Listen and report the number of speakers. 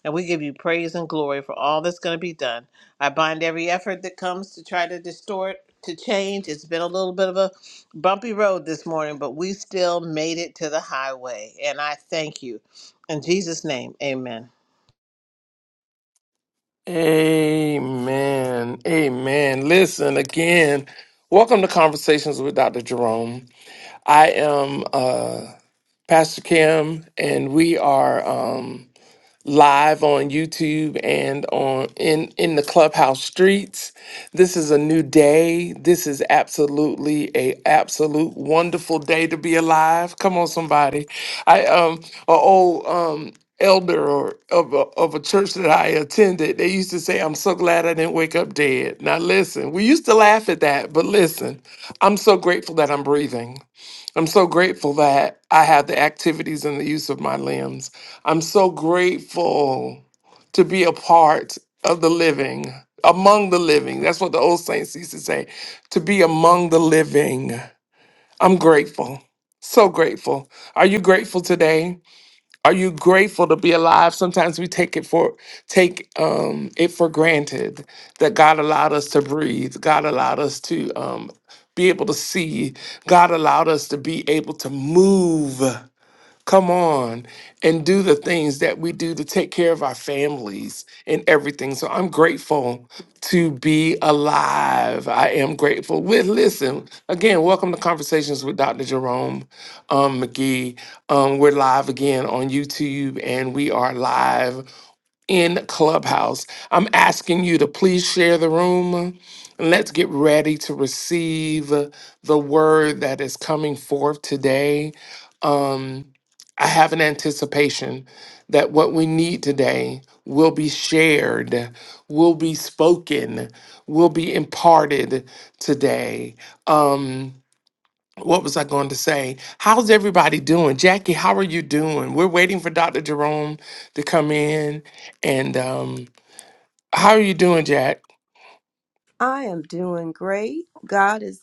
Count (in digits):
3